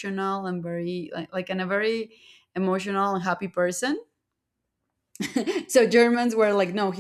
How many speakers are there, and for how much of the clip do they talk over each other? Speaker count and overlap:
one, no overlap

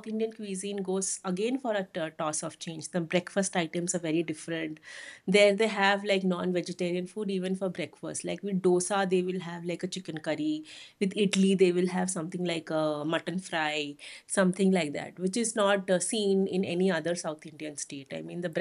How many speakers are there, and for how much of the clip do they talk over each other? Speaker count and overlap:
one, no overlap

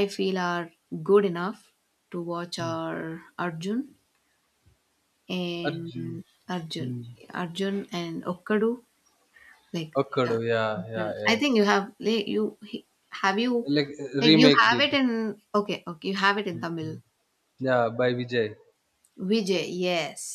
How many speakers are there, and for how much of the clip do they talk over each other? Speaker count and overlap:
two, about 12%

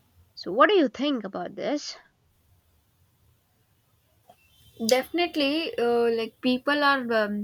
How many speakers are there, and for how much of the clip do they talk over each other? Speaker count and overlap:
two, no overlap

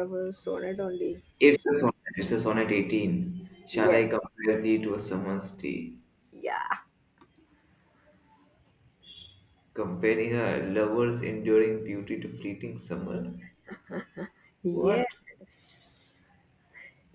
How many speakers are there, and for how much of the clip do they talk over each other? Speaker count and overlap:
two, about 6%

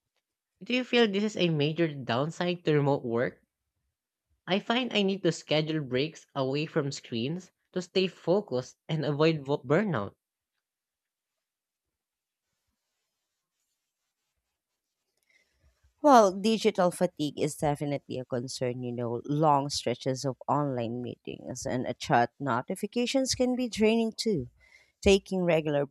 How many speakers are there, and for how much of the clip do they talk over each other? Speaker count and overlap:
two, no overlap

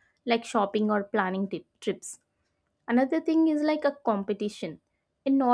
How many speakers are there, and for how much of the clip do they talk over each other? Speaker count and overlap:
one, no overlap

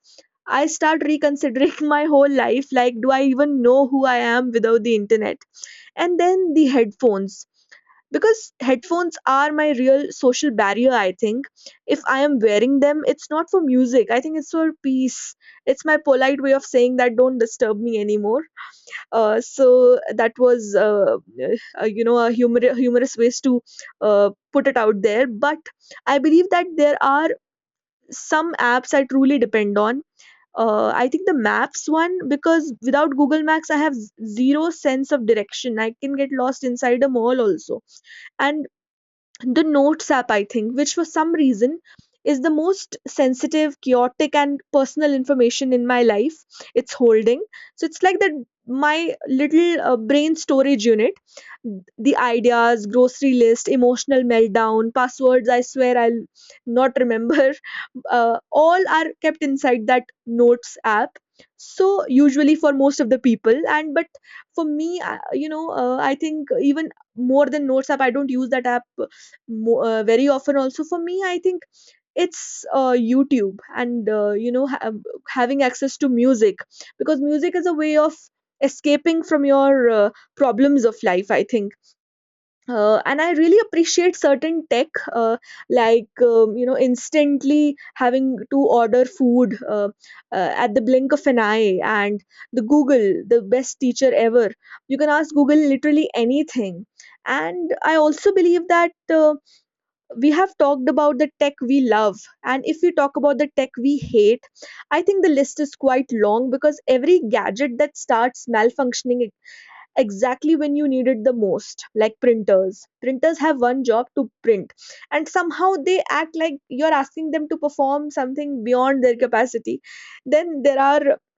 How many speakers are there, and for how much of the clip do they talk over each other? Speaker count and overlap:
one, no overlap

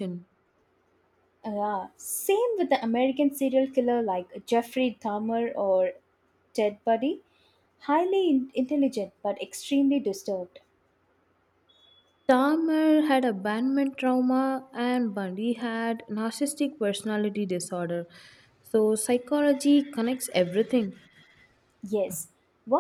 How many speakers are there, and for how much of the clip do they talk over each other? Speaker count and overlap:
two, no overlap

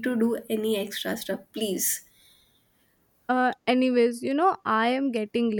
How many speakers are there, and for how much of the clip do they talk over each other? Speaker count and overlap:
two, no overlap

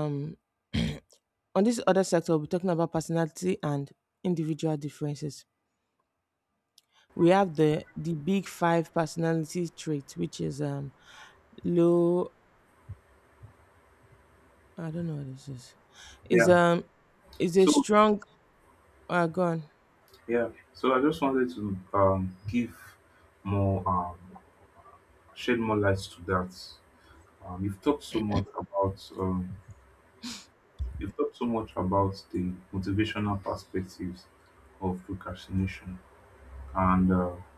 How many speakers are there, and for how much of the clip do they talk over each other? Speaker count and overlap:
two, about 1%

